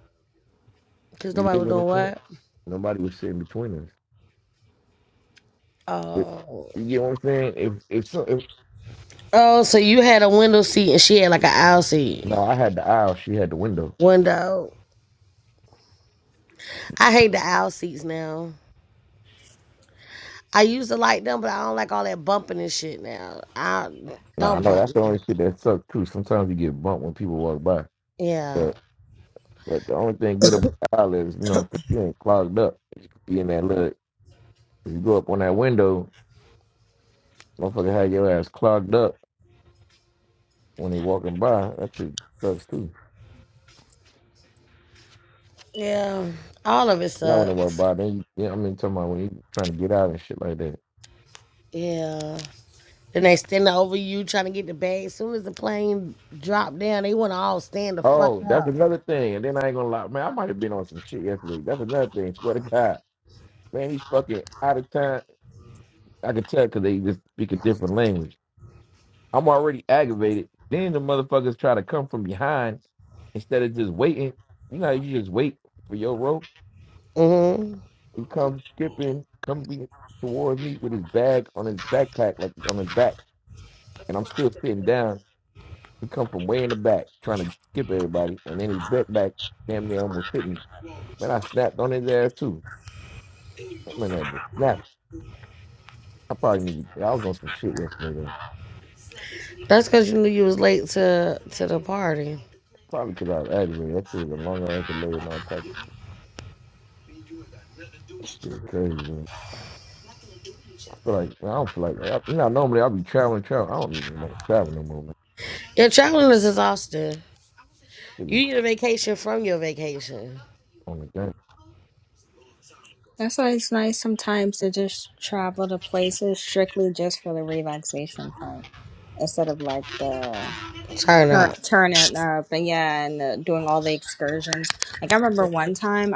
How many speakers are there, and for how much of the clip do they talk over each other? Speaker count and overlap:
three, about 3%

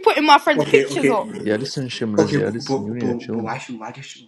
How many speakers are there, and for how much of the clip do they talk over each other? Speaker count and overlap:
three, about 48%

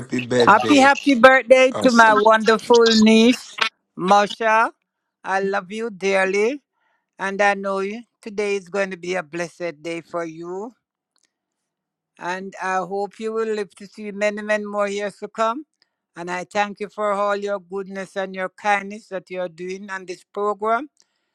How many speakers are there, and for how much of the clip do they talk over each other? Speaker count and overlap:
two, about 4%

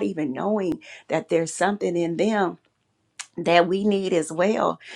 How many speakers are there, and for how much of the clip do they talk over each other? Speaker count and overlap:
one, no overlap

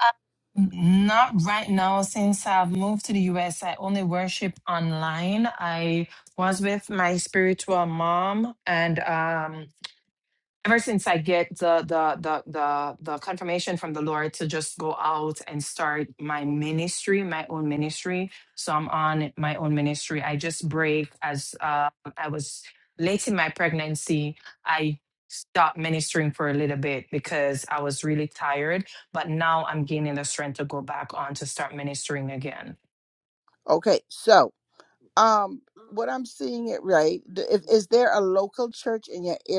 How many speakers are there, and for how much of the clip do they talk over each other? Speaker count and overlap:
two, no overlap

